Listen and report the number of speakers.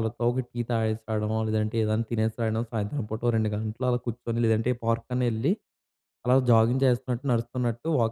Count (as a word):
one